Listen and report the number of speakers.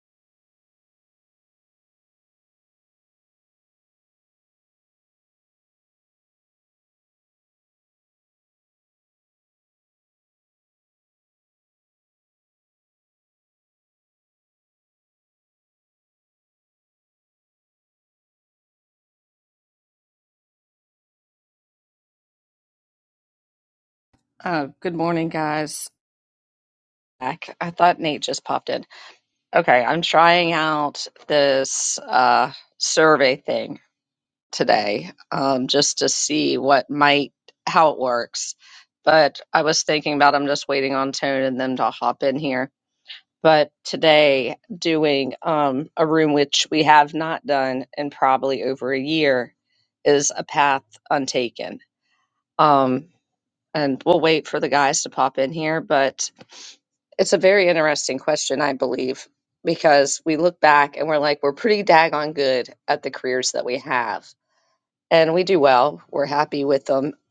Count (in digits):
1